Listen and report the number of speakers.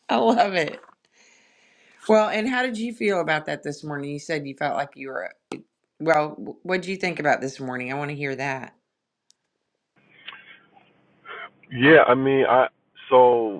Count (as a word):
two